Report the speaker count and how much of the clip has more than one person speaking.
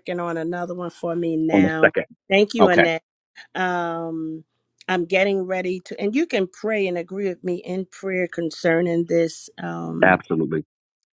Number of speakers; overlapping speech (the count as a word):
two, about 7%